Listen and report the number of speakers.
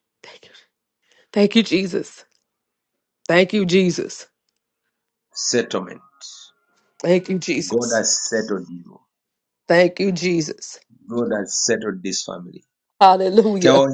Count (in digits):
2